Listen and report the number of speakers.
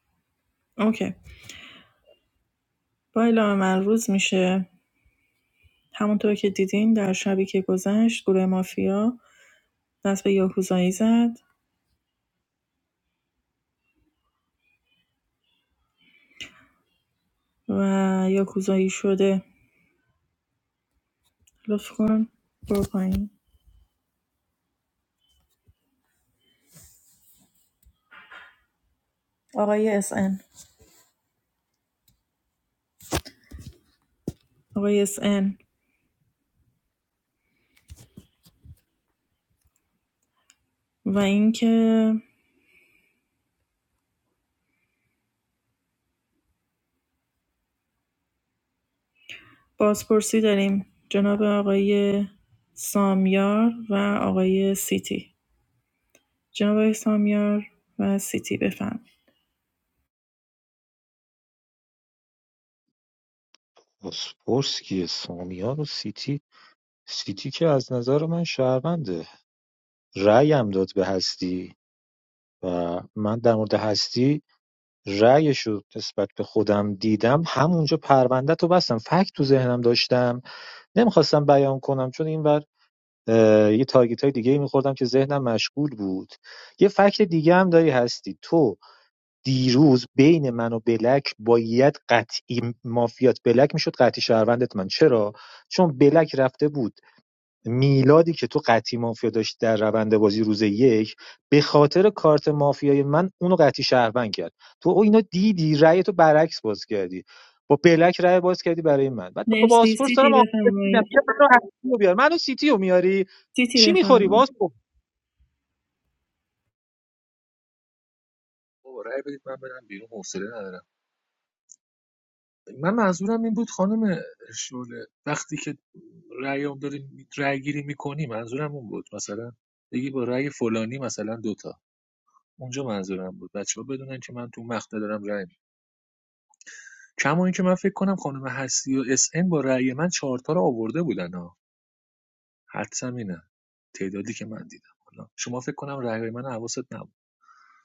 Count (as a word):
three